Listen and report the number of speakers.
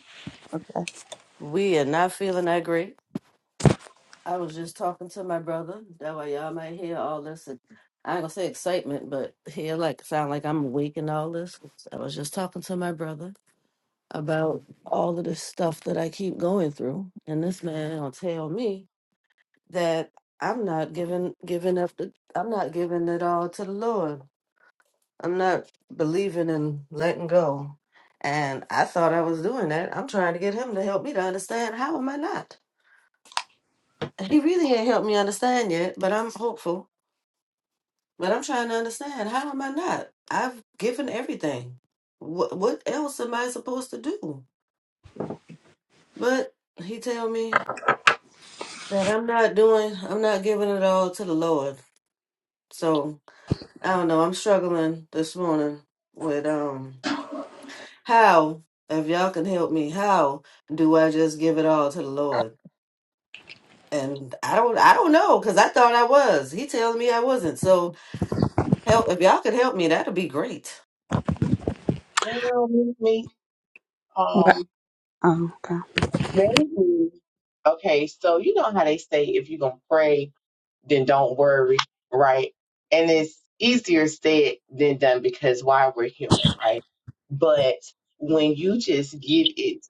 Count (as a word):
three